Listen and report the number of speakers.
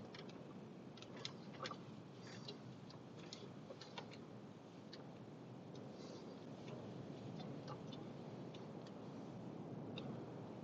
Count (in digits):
0